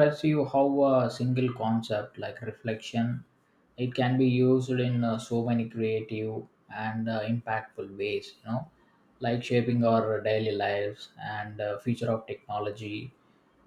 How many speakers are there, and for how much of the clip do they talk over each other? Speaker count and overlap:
one, no overlap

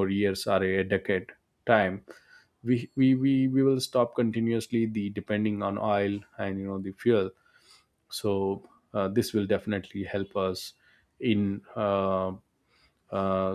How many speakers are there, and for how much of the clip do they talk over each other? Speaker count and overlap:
one, no overlap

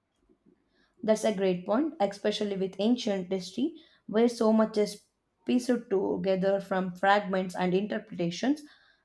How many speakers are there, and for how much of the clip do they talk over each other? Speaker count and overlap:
one, no overlap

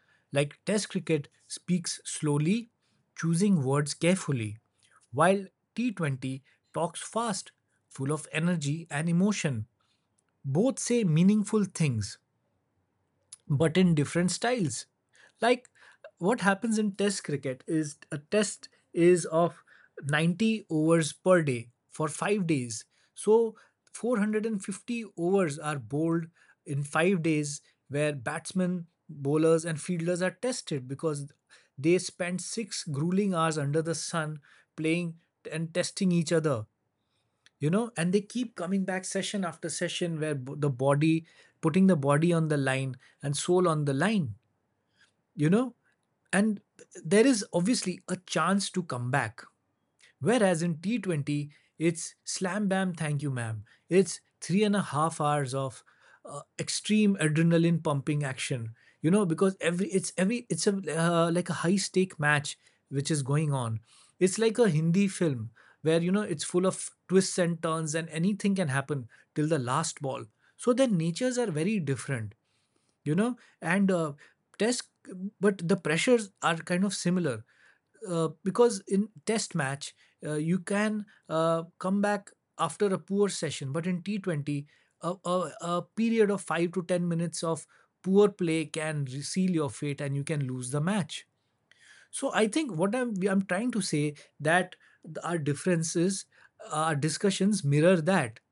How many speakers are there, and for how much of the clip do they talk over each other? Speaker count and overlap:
one, no overlap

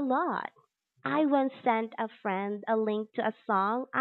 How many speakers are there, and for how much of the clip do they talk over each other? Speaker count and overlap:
one, no overlap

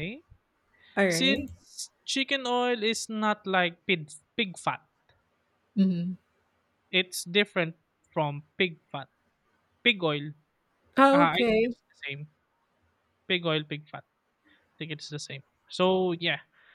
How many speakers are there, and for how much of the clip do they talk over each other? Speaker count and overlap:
two, about 5%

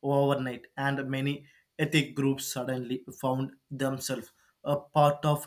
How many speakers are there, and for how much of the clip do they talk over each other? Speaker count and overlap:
one, no overlap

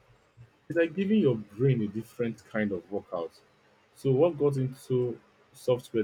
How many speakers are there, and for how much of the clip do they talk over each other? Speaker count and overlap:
one, no overlap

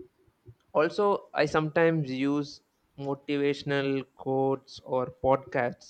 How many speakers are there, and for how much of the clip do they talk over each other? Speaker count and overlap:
one, no overlap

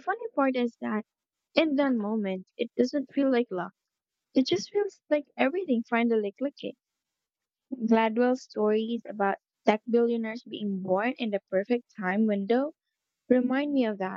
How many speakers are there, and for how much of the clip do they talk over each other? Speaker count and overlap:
one, no overlap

